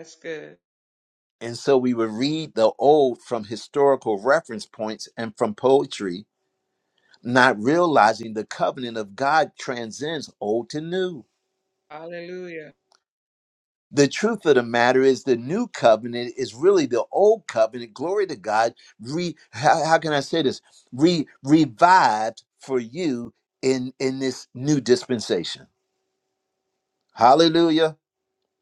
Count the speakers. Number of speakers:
2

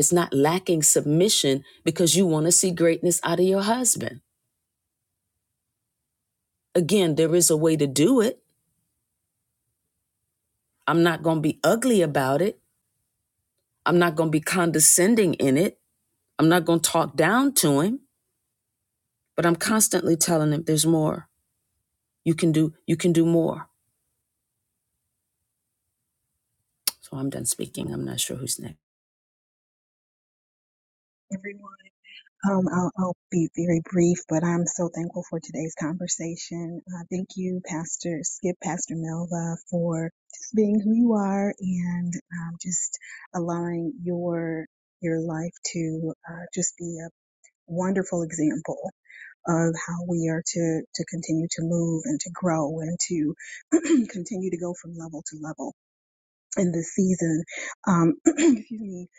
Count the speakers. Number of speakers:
2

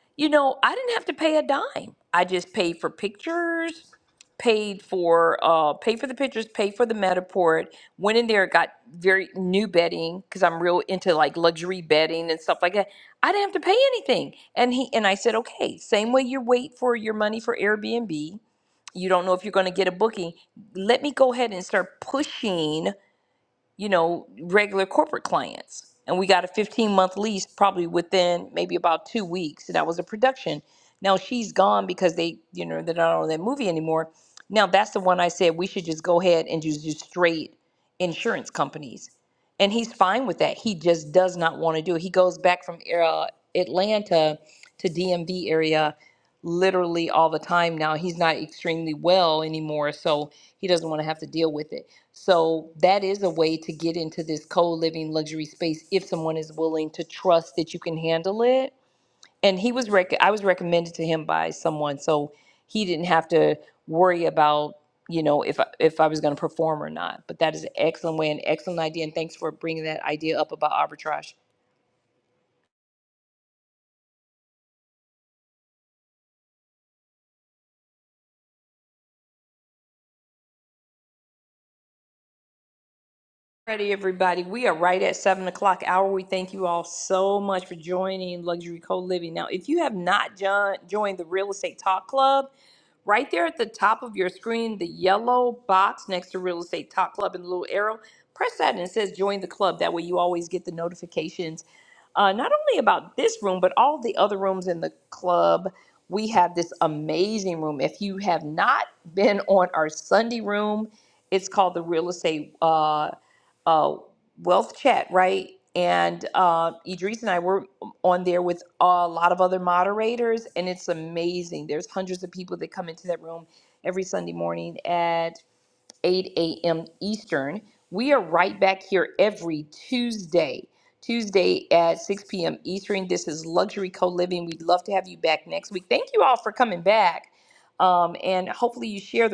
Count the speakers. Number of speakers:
1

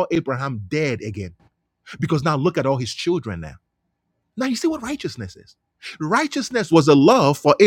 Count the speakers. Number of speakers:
1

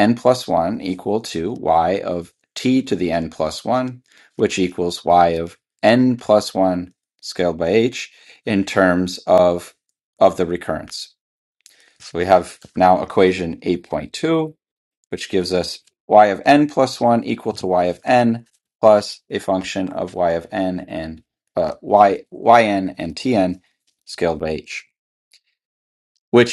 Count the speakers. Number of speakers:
1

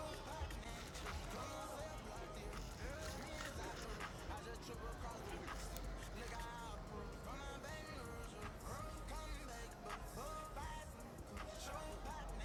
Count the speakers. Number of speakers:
0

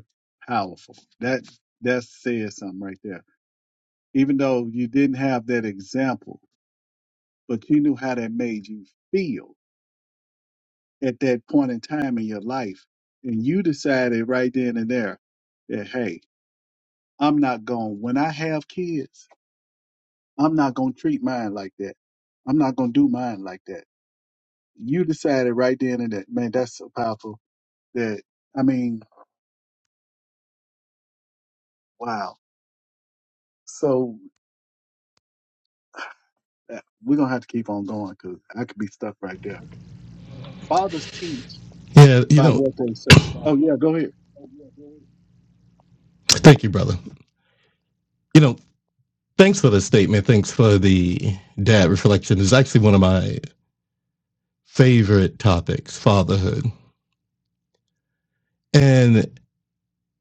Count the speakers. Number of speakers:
2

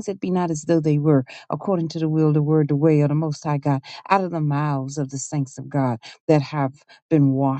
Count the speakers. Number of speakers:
1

